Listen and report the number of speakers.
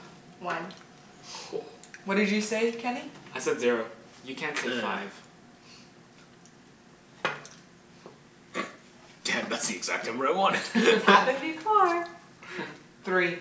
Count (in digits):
4